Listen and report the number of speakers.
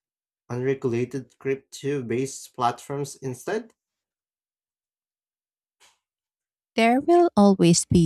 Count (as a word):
two